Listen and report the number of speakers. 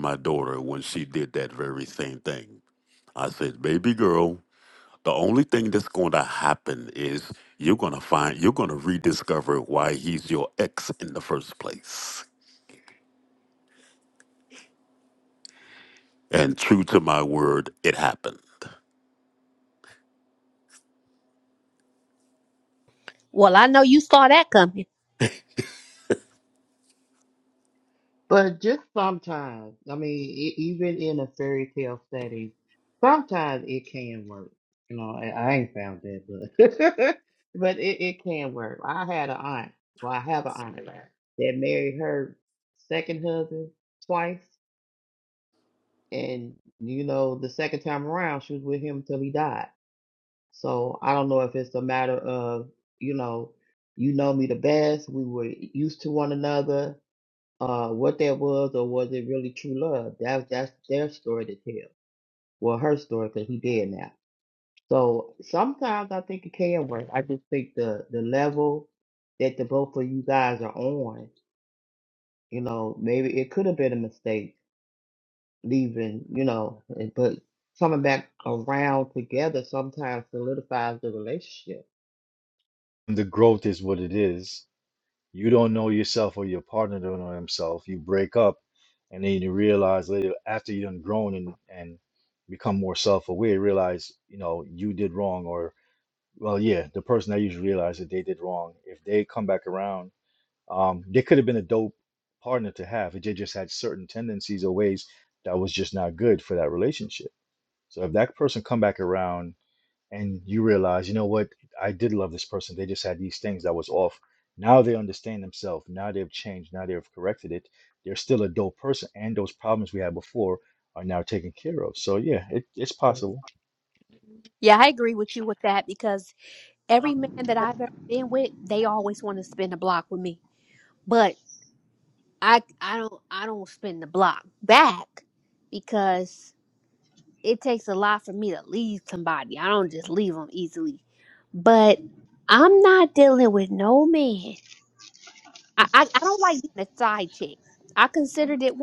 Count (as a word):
four